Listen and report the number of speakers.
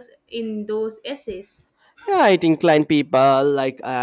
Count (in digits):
2